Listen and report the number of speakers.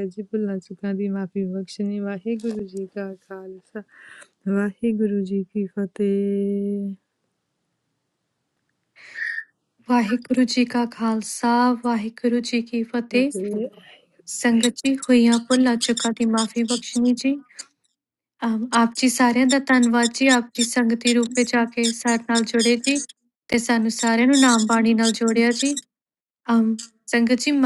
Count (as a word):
two